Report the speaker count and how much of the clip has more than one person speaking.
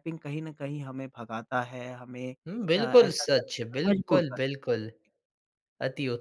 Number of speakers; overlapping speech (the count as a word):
two, about 27%